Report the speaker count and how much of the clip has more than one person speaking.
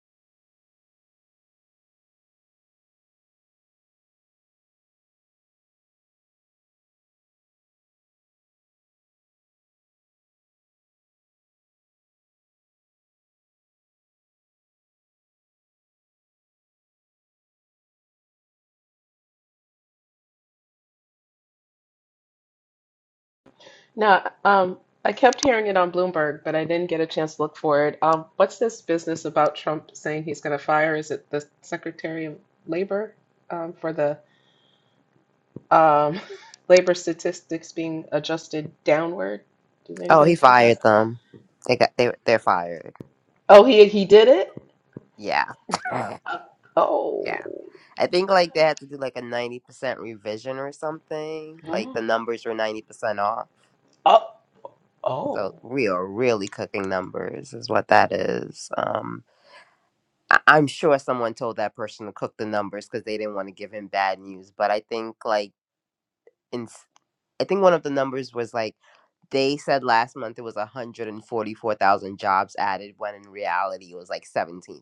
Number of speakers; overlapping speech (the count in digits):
2, about 2%